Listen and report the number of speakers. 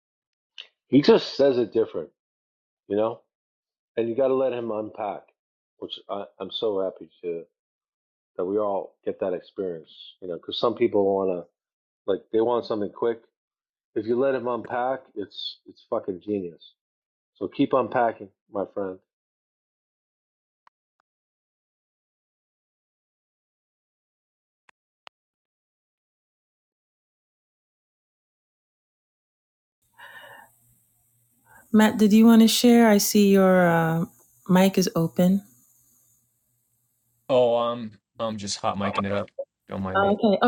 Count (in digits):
3